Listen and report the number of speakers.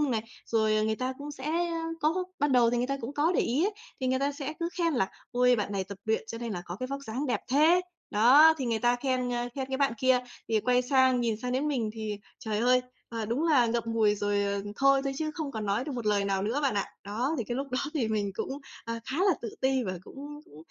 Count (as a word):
one